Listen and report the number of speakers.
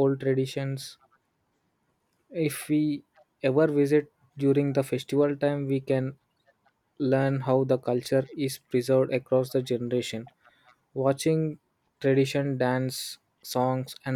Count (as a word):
one